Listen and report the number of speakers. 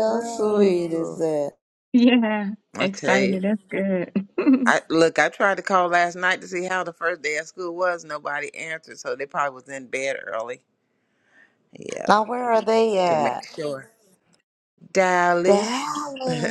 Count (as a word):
three